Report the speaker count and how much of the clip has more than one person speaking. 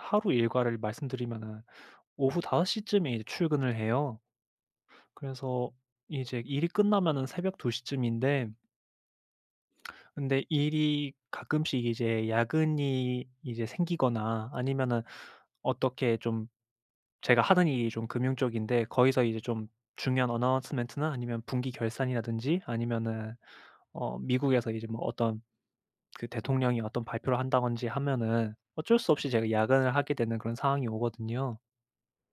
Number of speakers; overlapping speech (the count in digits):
1, no overlap